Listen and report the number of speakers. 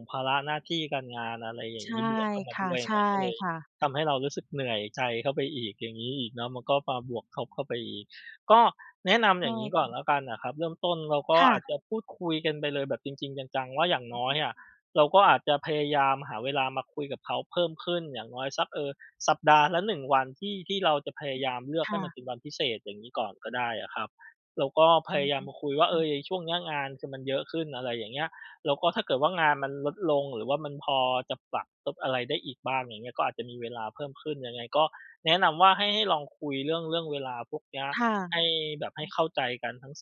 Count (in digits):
2